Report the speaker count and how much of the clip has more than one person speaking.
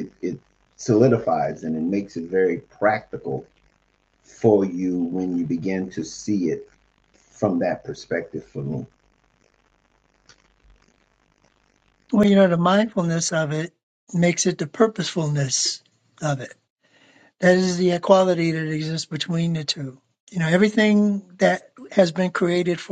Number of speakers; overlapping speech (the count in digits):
2, no overlap